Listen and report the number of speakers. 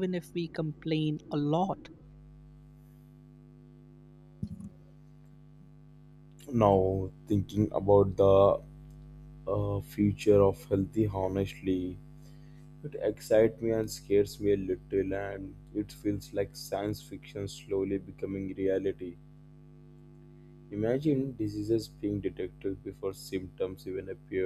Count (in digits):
2